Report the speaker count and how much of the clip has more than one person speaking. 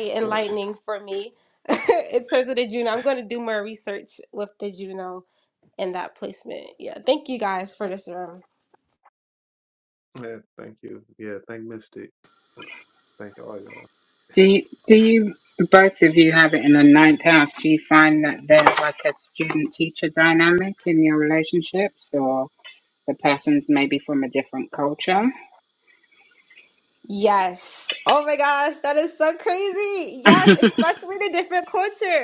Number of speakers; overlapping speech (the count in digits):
3, about 1%